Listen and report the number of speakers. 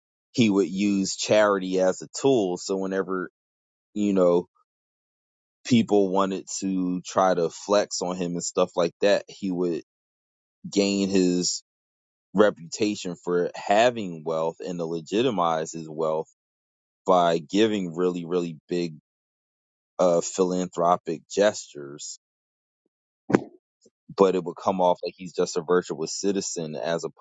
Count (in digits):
1